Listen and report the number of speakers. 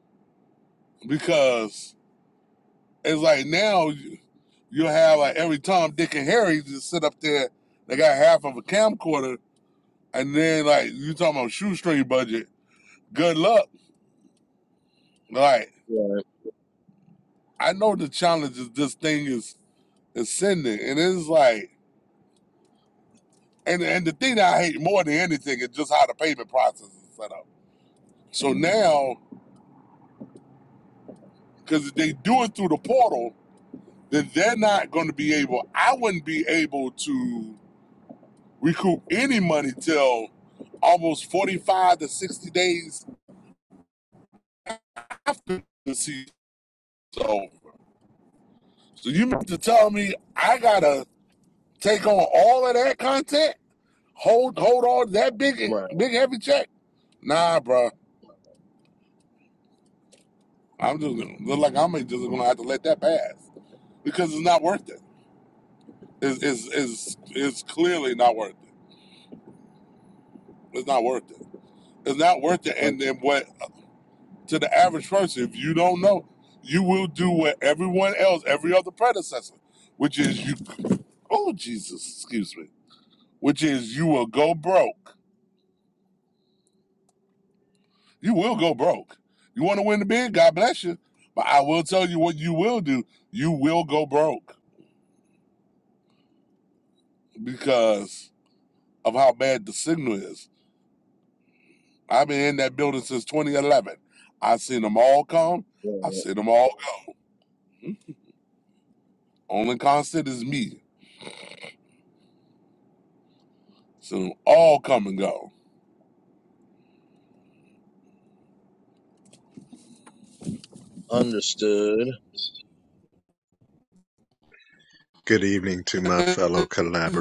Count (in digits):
3